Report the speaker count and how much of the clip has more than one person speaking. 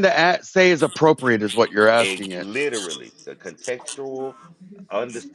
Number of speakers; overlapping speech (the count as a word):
two, about 8%